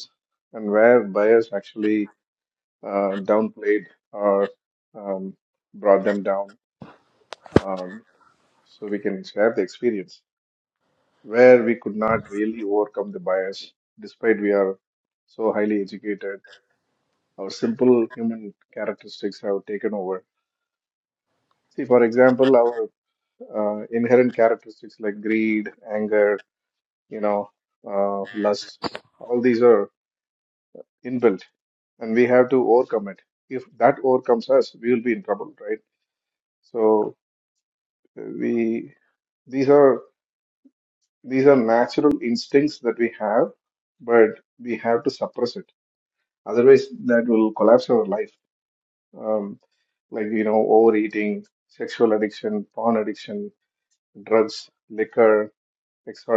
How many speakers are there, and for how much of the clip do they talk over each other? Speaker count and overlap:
one, no overlap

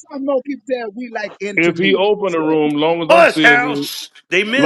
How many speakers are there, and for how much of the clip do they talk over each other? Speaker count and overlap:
three, about 31%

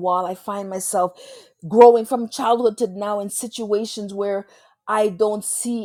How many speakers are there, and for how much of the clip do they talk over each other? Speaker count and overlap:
one, no overlap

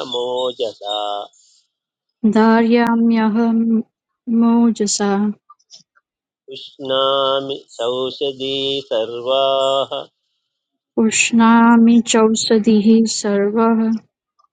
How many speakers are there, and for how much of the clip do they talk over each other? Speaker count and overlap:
two, no overlap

